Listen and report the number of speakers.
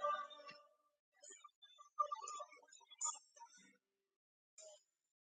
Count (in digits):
0